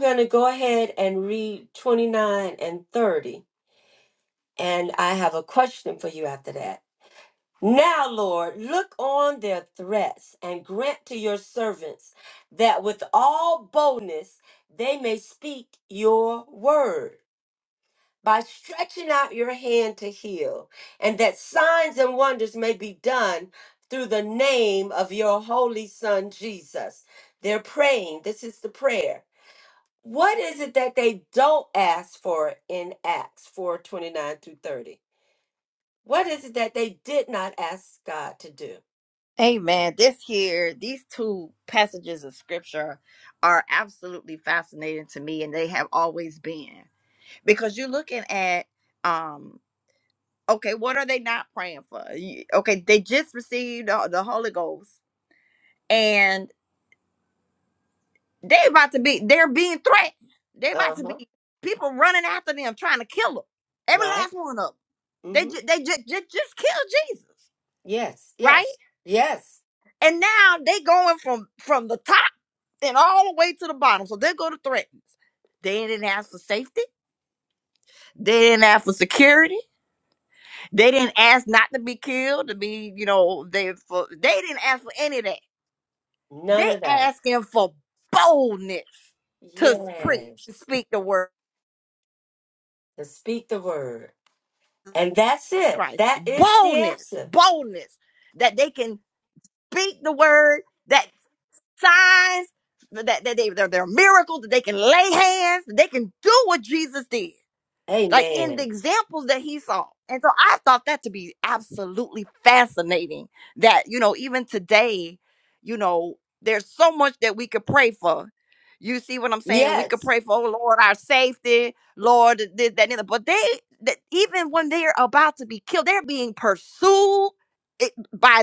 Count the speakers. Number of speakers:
2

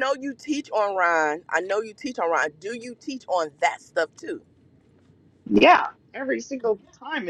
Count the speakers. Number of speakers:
2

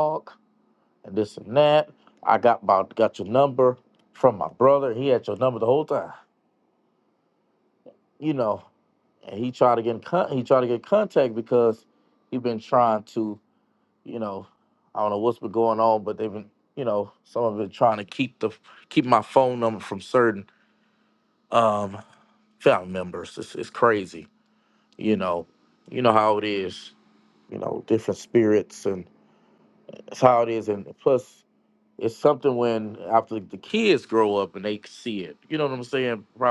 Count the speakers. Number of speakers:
1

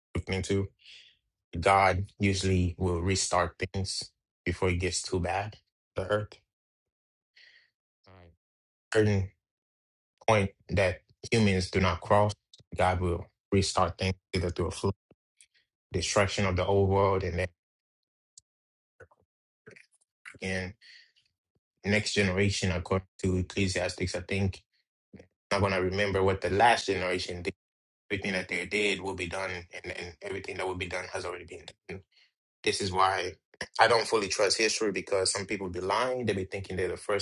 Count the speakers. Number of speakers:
1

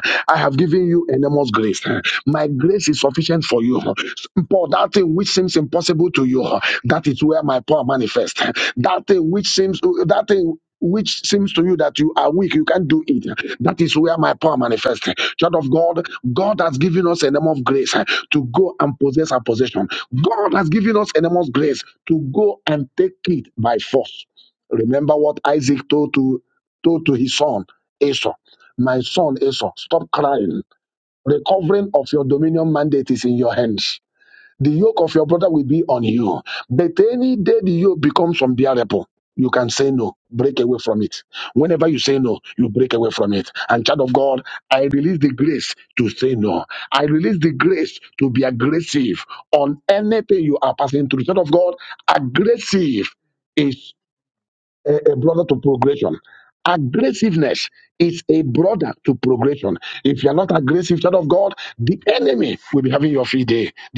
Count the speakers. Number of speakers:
1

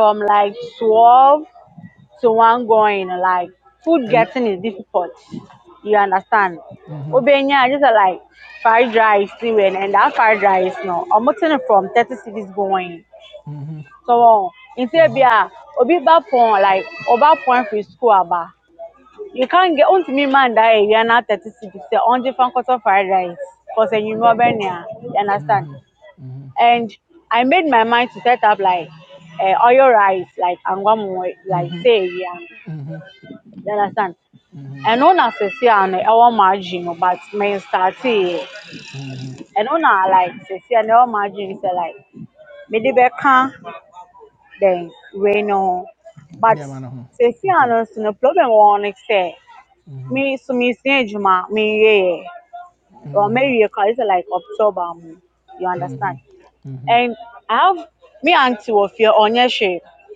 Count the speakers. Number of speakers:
2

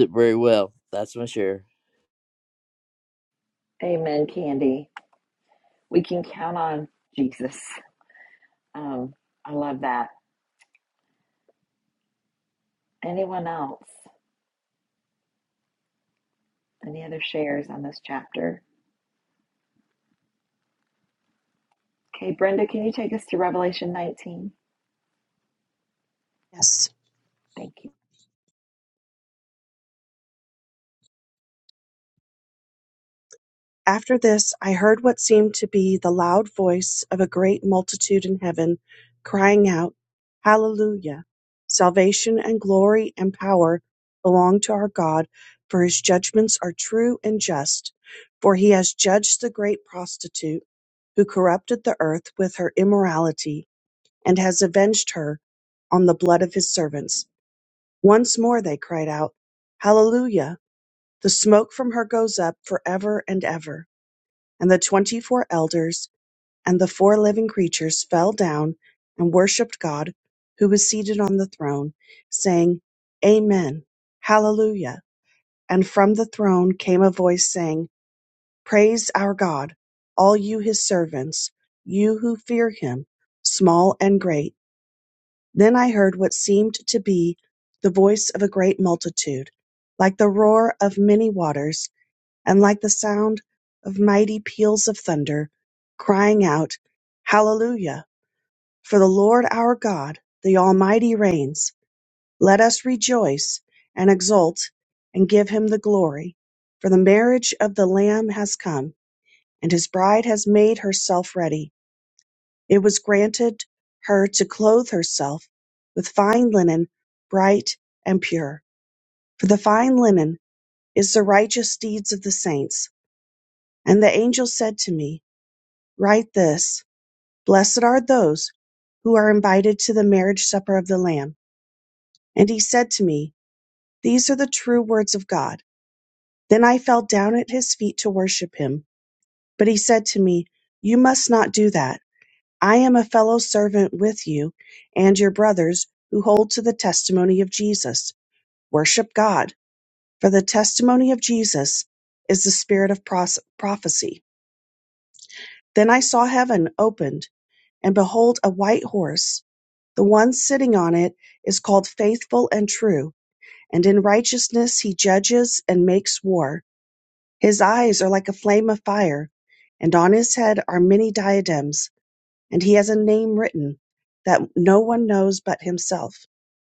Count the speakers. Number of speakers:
3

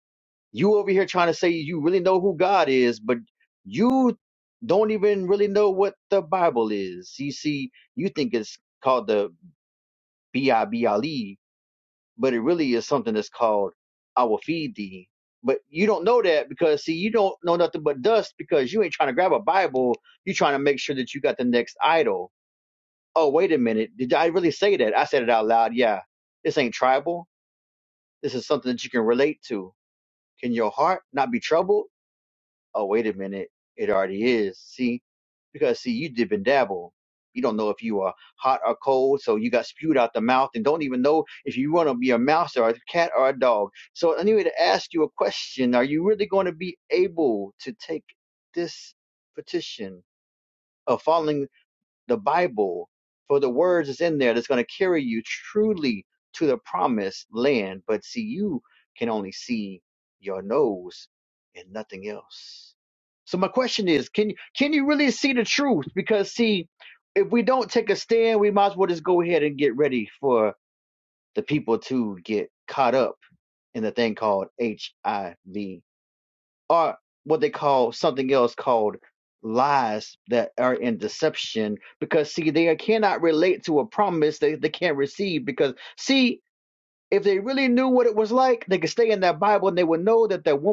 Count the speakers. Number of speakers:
1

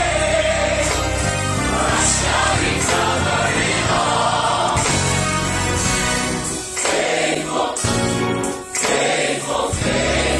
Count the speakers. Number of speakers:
0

